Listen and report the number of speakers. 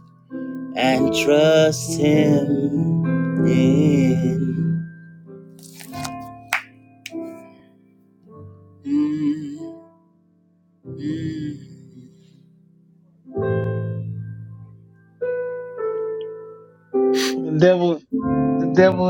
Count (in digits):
2